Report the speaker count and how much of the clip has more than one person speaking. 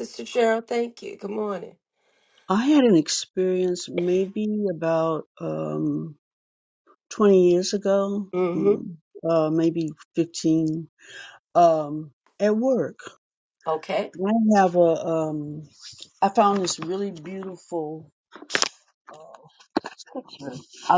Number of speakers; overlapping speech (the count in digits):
2, about 2%